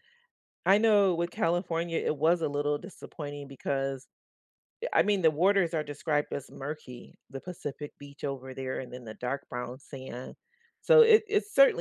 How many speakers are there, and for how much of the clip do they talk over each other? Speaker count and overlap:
one, no overlap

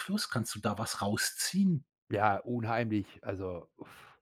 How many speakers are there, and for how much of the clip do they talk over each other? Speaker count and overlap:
two, no overlap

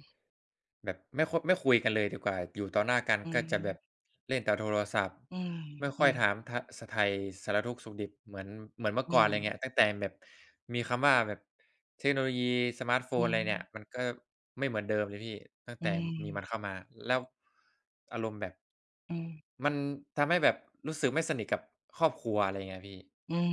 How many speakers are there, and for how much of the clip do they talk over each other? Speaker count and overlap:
two, about 6%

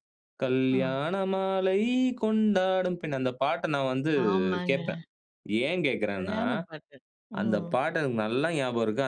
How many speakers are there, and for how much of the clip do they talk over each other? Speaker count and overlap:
two, about 11%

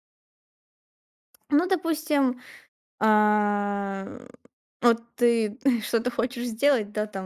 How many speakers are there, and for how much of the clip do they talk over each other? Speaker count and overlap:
one, no overlap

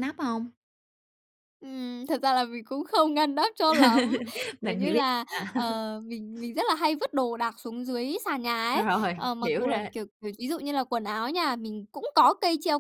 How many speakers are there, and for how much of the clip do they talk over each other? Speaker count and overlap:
two, about 14%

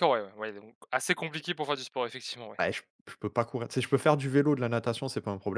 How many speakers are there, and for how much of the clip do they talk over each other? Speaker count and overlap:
two, no overlap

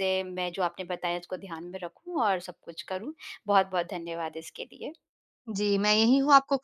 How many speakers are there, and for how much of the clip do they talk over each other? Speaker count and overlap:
two, no overlap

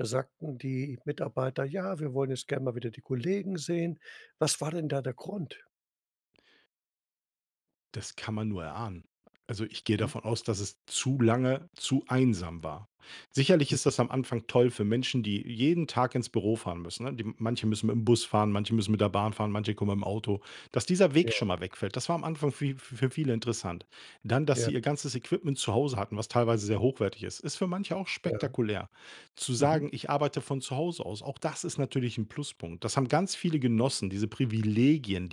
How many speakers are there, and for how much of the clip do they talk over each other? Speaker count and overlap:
two, about 3%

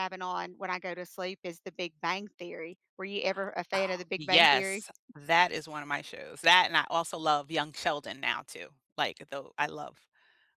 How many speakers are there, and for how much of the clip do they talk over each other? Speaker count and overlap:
two, about 7%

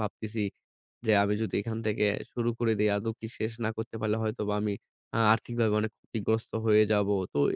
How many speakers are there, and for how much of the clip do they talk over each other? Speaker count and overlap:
one, no overlap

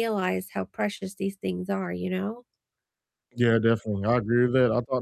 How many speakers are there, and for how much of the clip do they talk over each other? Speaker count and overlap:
two, no overlap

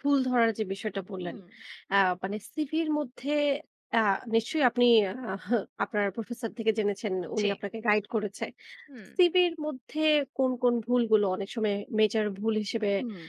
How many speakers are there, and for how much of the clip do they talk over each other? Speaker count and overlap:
two, about 3%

